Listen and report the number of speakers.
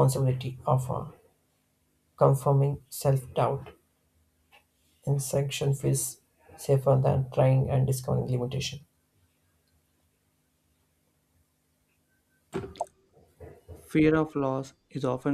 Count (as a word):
two